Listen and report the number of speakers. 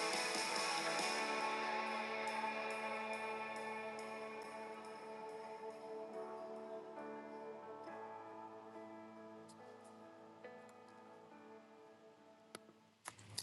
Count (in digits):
0